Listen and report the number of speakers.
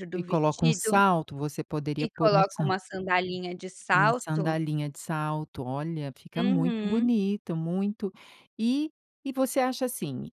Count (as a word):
two